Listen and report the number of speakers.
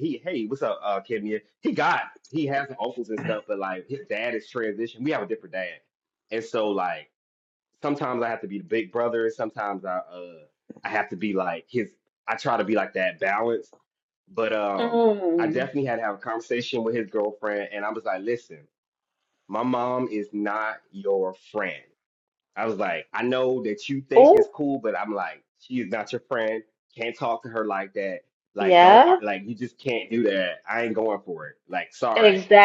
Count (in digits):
2